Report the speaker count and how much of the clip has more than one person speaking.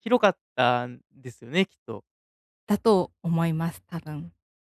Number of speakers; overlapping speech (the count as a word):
two, no overlap